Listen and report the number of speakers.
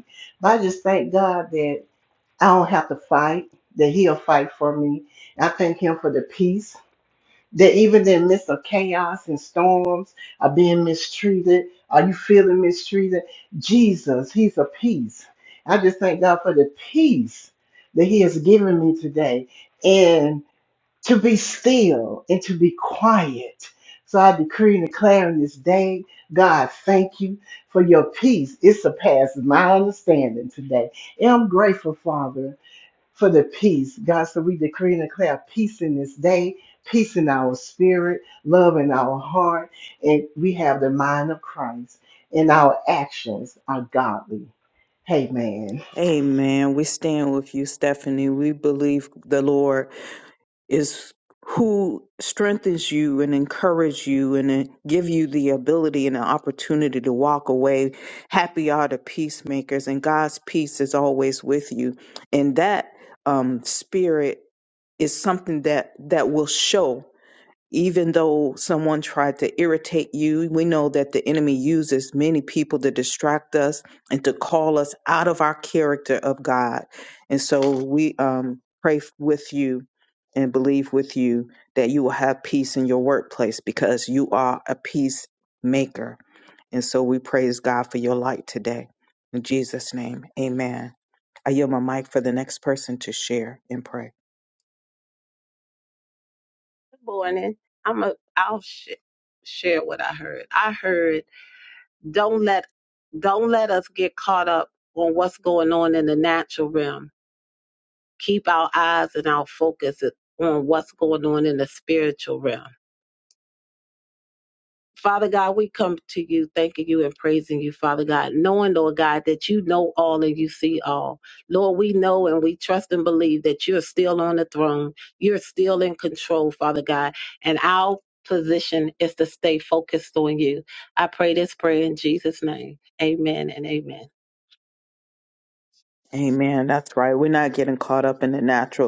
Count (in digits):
3